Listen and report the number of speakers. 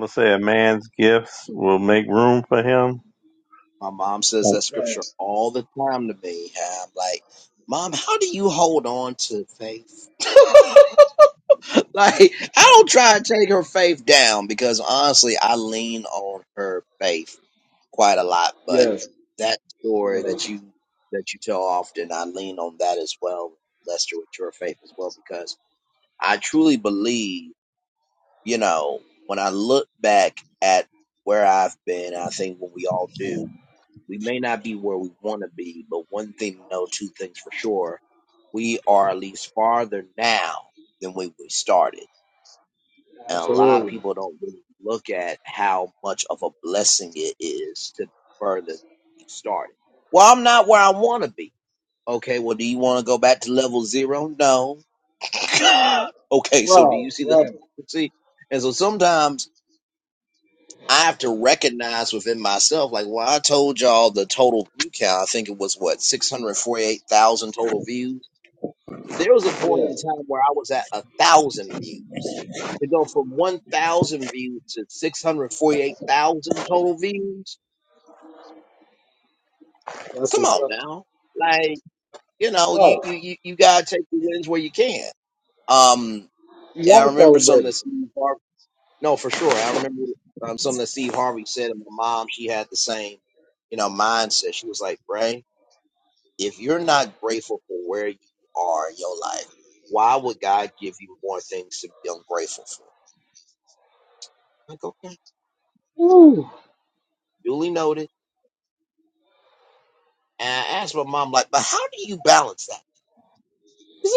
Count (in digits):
3